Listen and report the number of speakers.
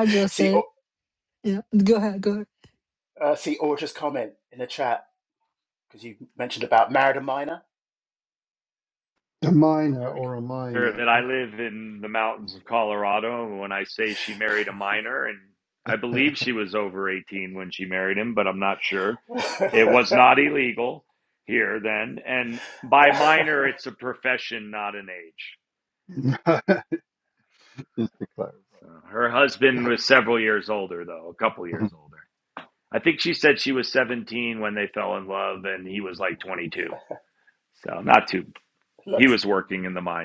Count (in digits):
4